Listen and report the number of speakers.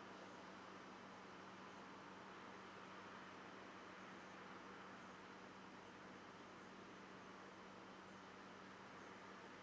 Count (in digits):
0